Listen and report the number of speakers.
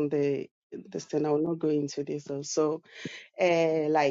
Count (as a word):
one